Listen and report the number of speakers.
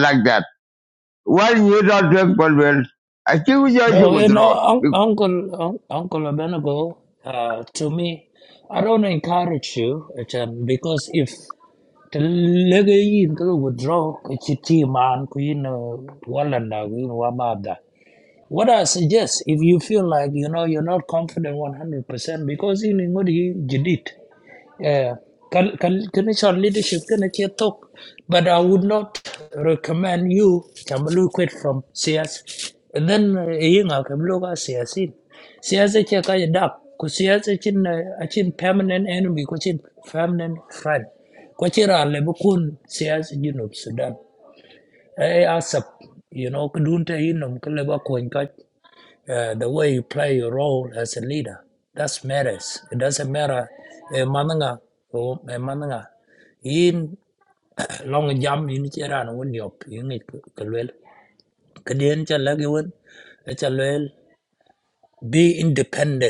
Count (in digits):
2